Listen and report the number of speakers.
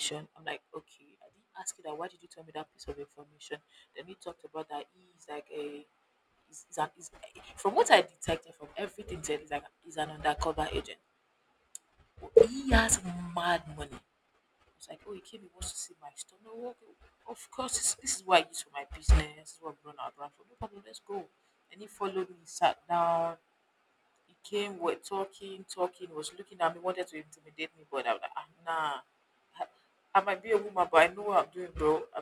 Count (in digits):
1